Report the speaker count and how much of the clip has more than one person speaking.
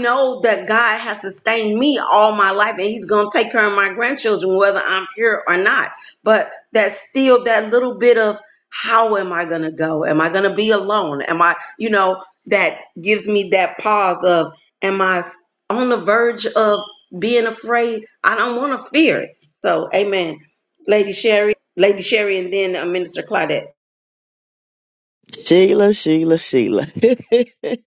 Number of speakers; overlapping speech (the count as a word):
two, no overlap